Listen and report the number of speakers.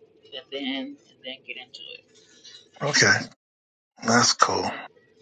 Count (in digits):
2